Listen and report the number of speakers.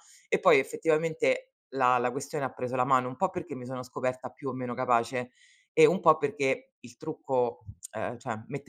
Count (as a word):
one